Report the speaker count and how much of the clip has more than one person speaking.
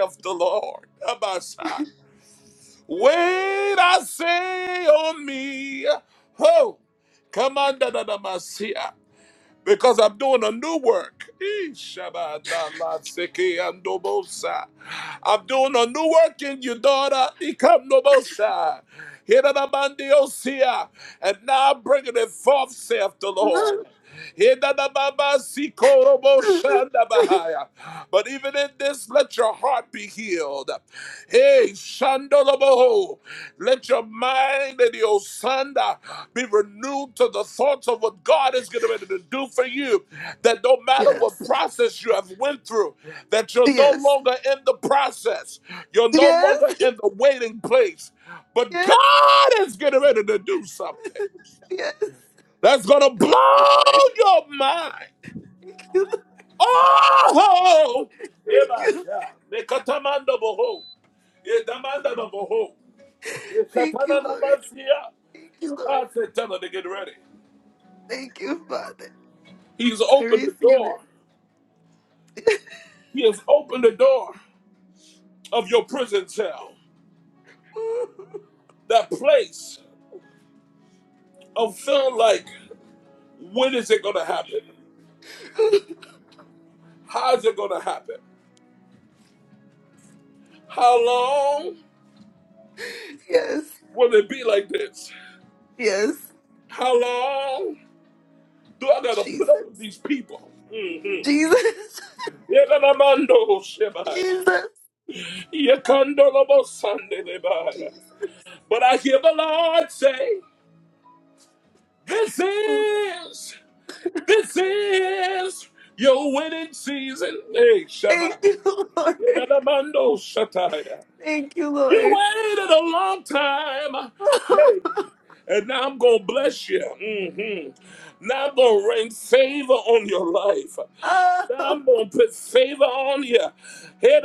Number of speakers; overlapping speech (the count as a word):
two, about 5%